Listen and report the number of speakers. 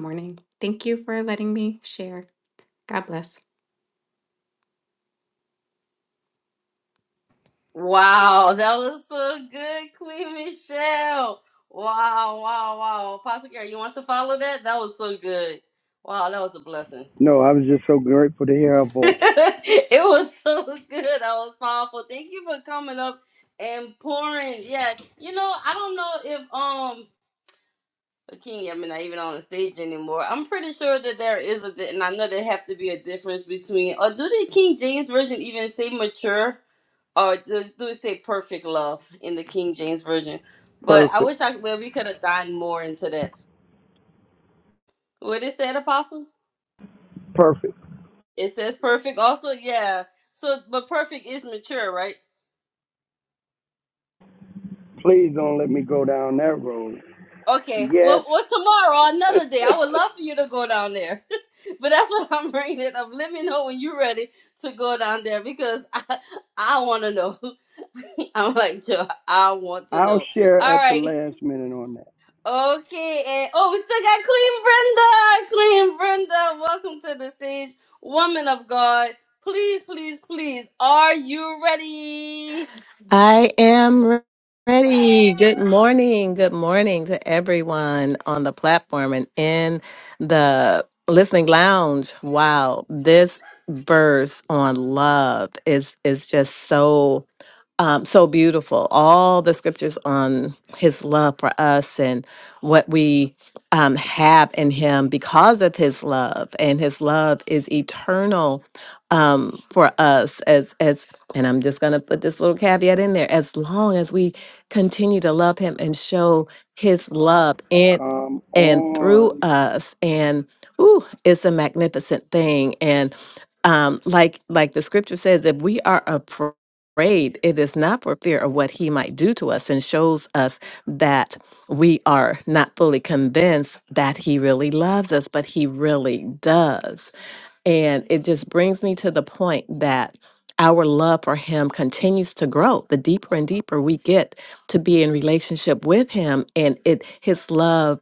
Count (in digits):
4